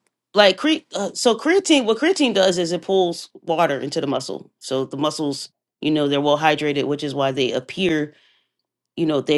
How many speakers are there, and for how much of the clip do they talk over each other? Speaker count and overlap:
1, no overlap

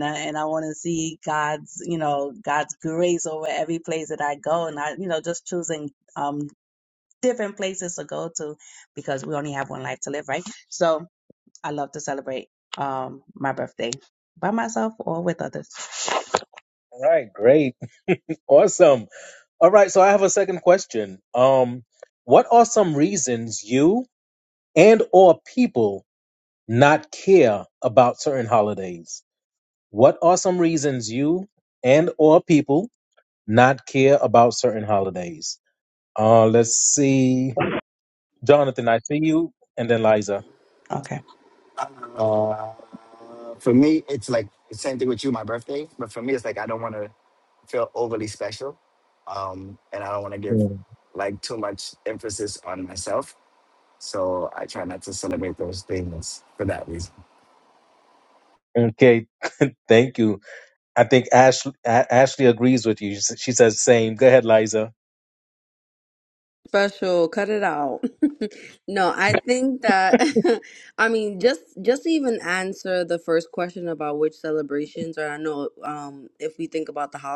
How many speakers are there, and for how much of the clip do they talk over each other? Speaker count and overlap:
4, under 1%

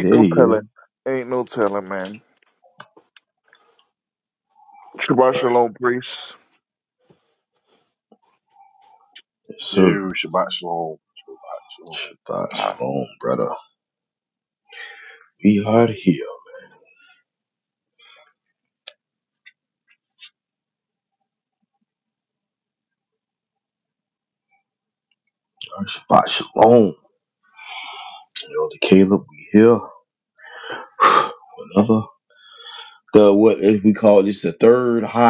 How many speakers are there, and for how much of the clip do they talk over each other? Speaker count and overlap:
3, about 4%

